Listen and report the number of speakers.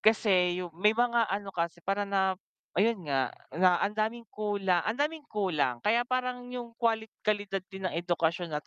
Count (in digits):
1